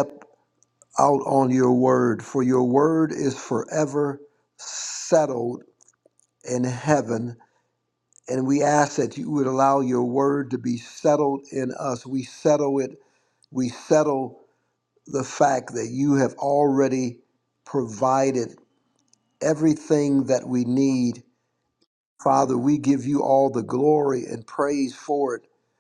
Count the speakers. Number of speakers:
1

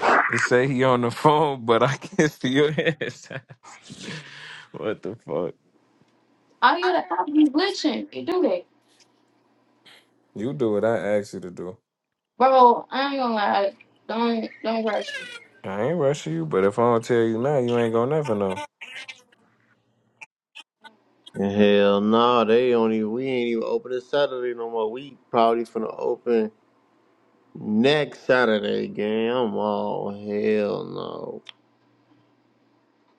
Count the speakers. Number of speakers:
3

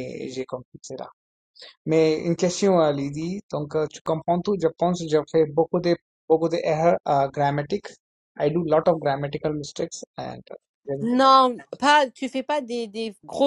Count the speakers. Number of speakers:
2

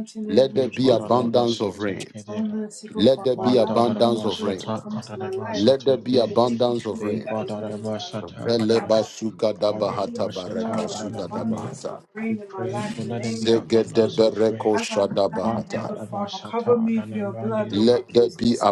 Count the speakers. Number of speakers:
3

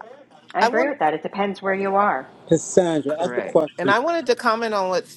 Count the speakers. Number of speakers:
3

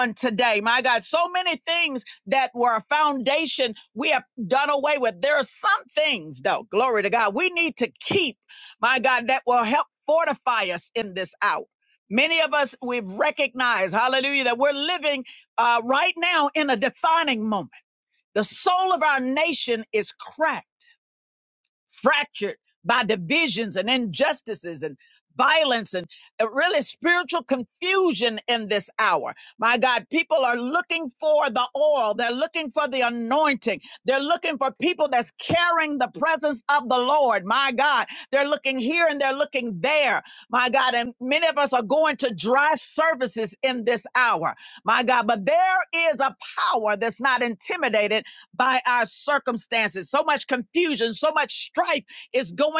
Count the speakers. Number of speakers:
1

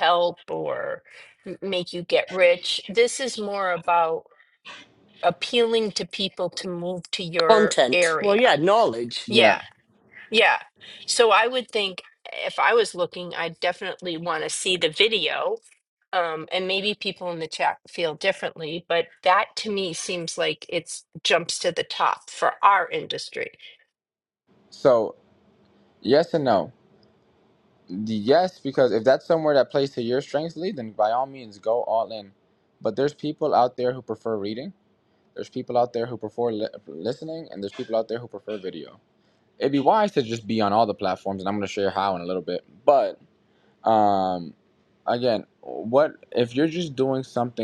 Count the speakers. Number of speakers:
3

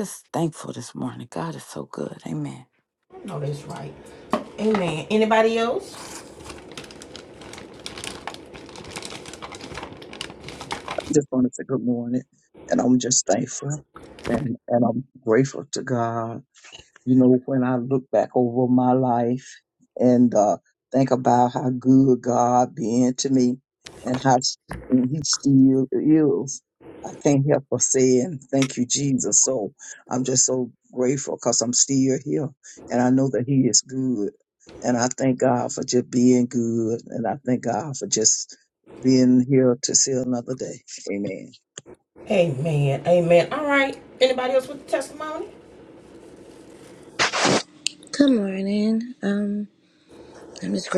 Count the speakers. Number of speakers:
4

